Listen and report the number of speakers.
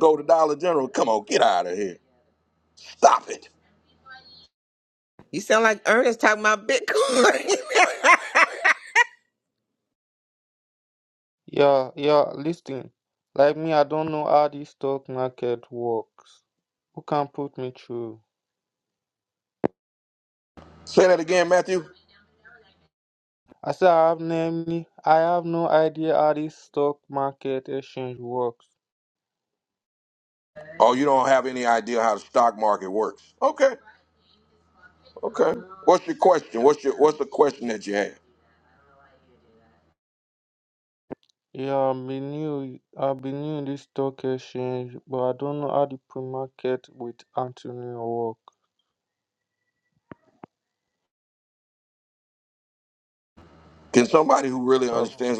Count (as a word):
three